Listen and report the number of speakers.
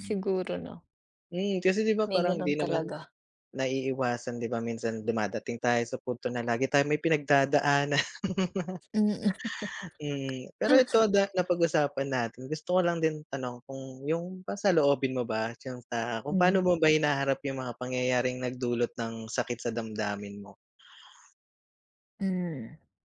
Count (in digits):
2